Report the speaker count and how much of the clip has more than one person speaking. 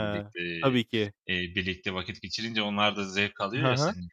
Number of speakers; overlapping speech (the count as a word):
two, about 17%